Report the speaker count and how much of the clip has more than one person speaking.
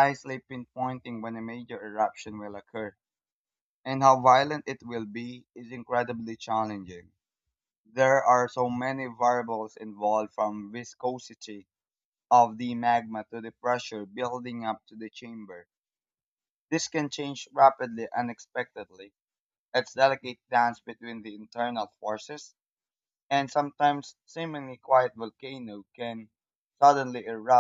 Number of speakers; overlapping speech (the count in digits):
1, no overlap